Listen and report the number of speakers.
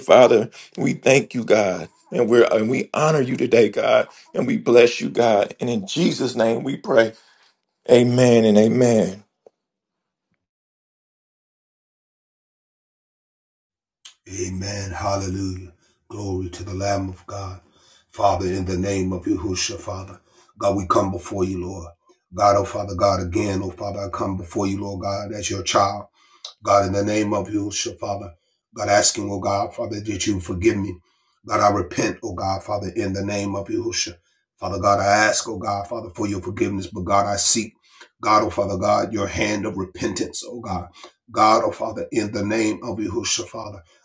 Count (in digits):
2